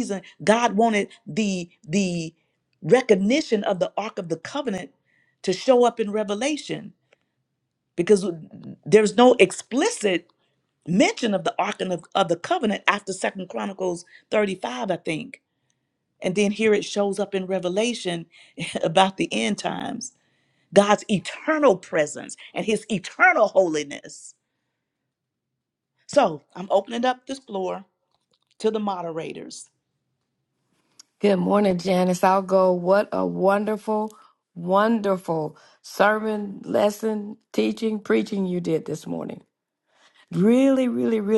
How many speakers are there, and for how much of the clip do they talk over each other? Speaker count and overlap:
two, no overlap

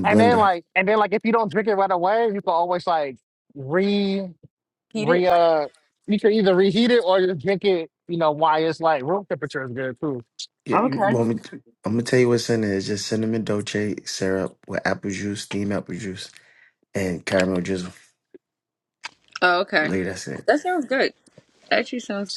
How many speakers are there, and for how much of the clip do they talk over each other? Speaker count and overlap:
three, about 6%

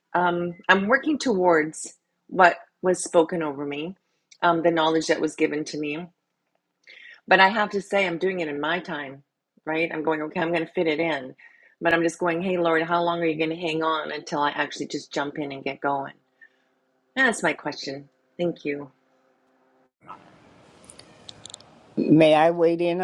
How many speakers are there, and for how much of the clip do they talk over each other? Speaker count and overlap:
two, no overlap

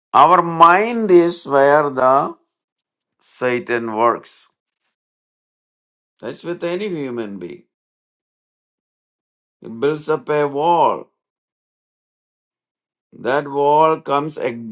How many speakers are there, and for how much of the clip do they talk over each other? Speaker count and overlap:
one, no overlap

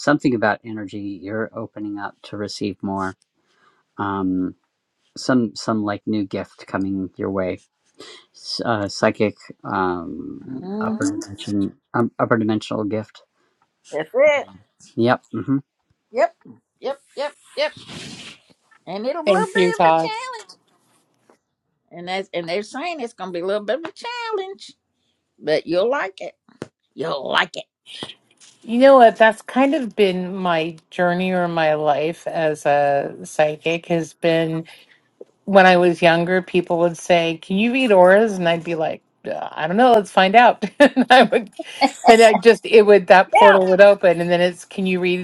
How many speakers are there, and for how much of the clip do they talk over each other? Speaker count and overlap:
three, about 3%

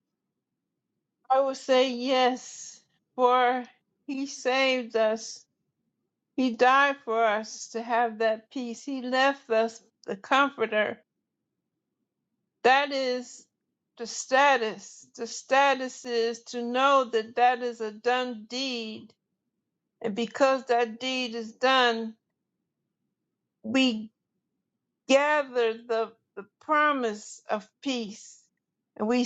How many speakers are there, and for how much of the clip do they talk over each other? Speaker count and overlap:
one, no overlap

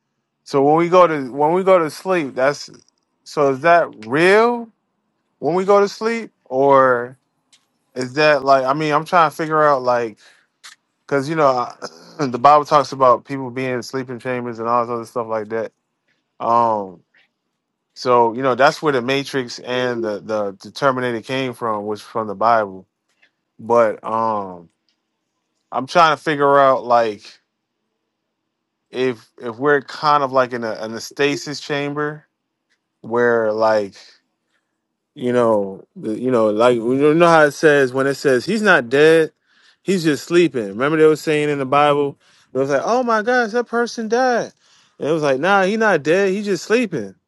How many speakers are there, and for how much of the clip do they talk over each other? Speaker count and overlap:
one, no overlap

